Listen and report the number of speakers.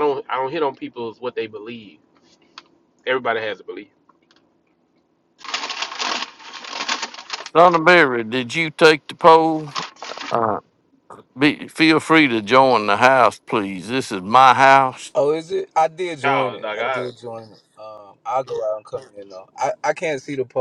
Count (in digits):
3